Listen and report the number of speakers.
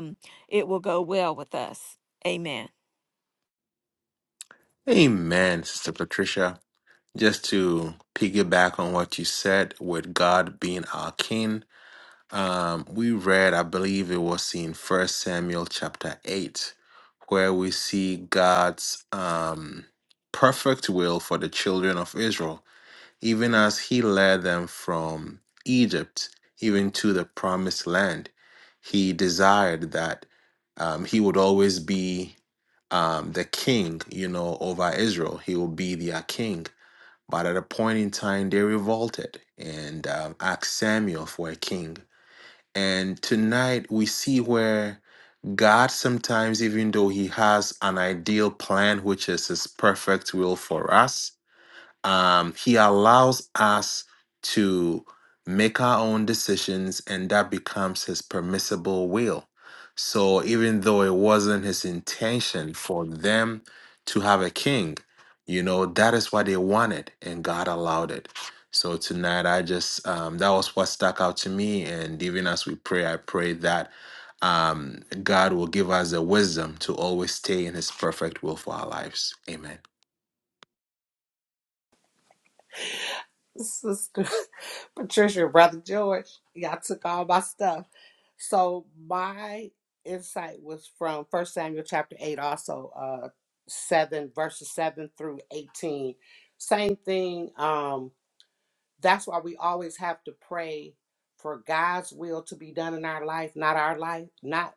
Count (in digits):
3